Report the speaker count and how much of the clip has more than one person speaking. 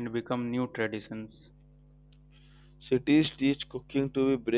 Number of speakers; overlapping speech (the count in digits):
2, no overlap